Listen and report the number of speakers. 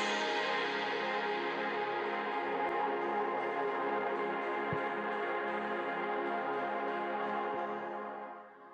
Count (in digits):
0